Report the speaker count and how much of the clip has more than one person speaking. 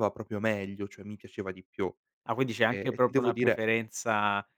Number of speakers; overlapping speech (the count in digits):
2, about 20%